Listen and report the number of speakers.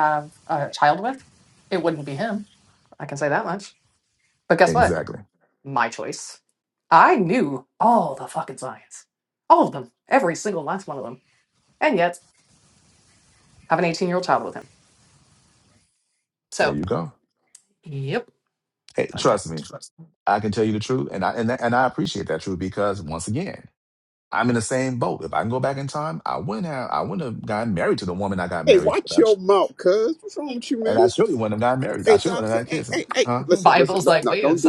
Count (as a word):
three